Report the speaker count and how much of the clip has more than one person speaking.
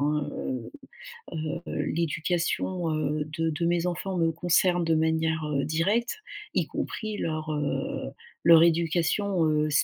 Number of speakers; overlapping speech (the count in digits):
1, no overlap